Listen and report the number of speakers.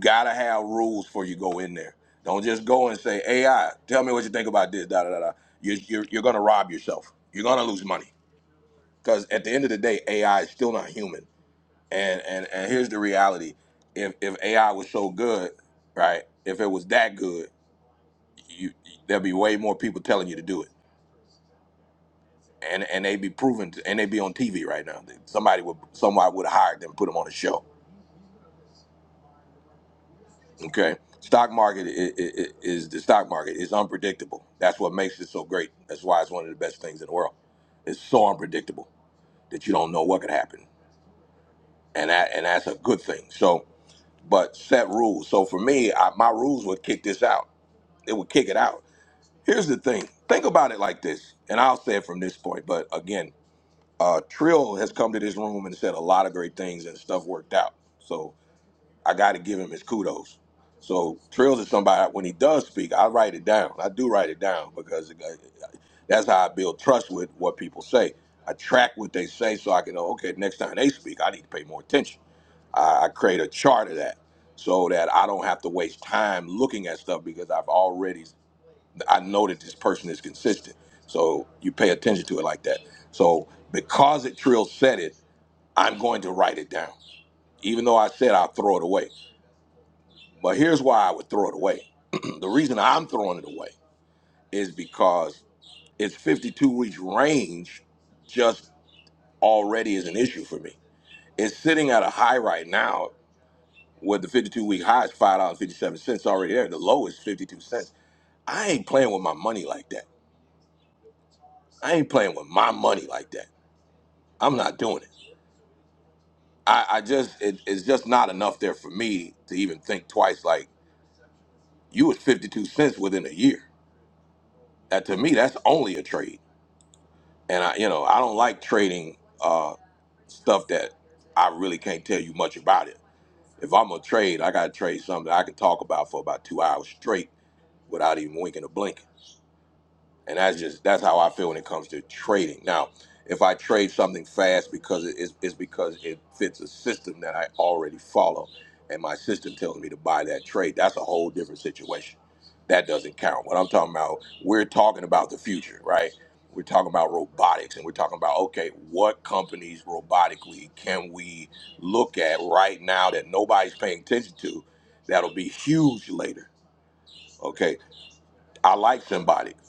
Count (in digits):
1